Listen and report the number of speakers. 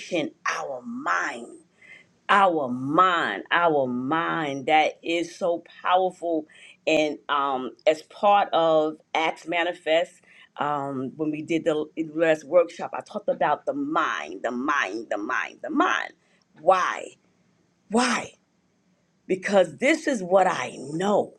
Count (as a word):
one